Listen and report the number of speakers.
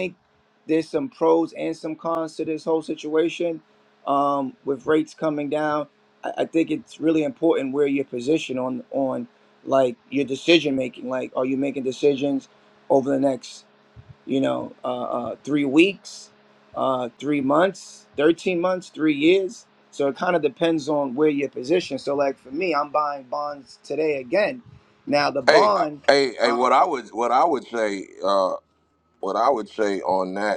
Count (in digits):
2